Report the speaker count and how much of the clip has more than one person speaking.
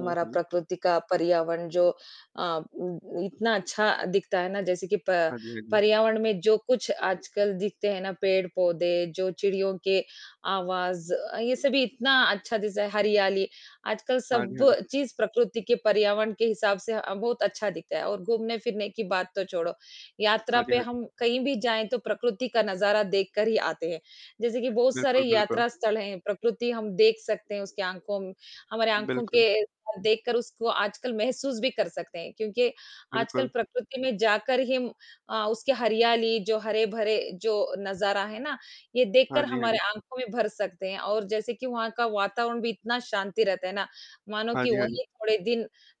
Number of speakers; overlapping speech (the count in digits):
2, about 7%